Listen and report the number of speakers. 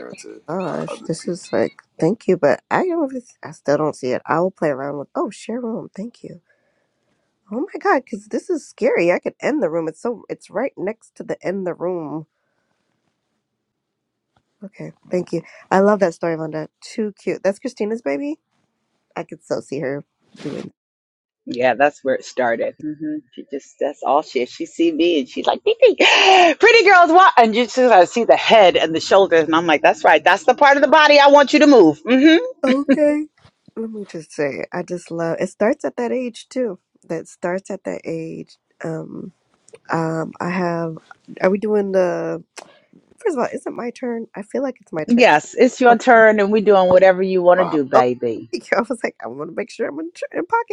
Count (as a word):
three